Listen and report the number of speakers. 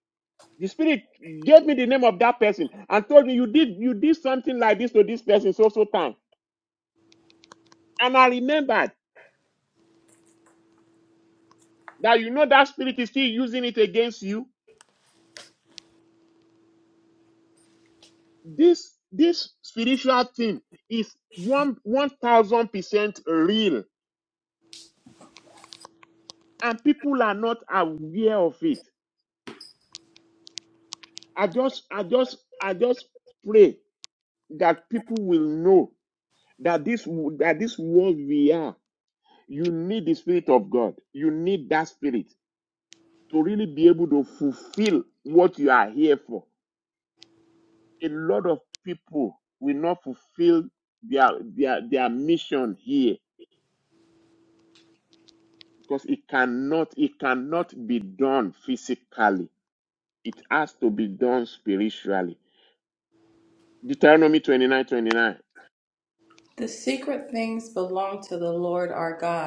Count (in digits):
2